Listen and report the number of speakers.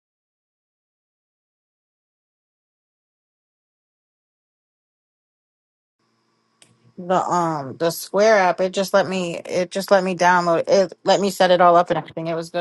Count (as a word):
one